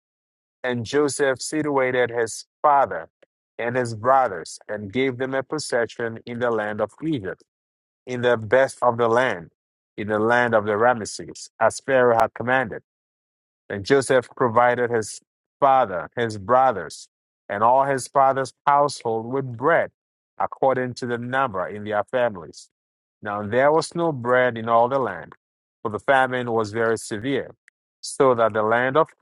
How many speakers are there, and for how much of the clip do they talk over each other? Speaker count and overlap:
one, no overlap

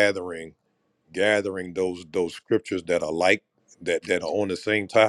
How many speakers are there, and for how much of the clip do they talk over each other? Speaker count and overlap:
one, no overlap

